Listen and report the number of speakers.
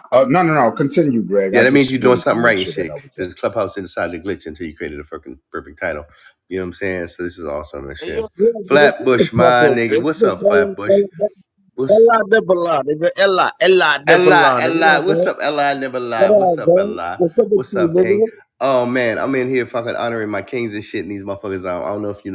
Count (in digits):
3